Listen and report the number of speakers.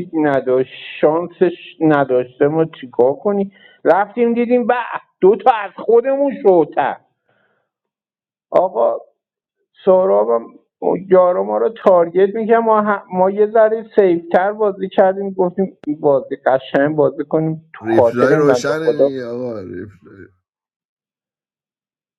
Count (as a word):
two